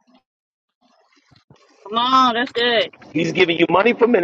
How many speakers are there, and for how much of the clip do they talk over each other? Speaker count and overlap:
2, no overlap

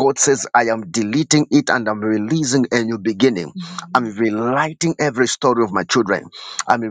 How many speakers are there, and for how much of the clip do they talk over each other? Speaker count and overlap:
1, no overlap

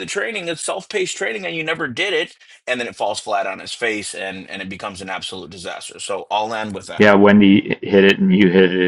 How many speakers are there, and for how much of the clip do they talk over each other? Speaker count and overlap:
2, about 1%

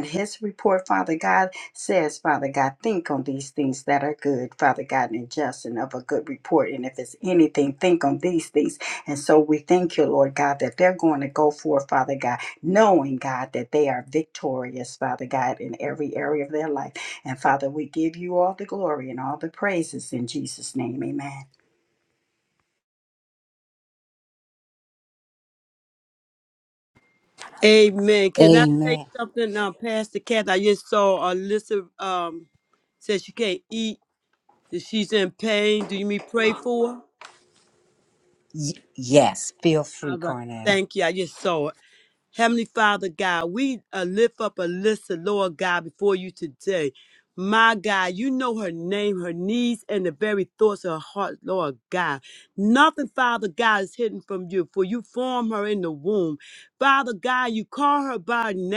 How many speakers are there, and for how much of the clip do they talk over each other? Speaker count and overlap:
3, about 2%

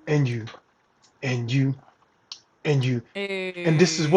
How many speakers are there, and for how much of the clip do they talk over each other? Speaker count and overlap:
2, about 13%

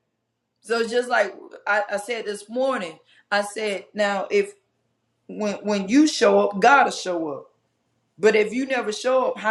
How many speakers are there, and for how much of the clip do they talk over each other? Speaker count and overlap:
1, no overlap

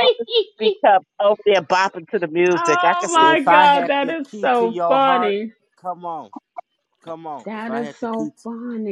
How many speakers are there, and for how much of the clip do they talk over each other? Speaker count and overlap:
3, about 41%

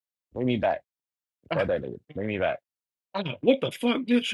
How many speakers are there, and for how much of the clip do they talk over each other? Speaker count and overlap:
2, about 3%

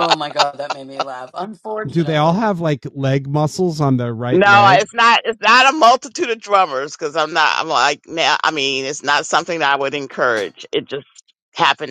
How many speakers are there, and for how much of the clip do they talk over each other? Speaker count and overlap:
3, about 9%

